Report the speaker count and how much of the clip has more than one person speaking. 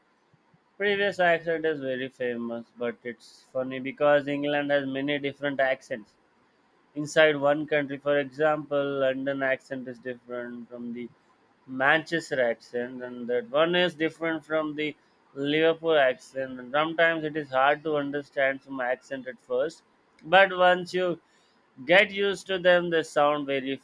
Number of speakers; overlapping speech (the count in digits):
1, no overlap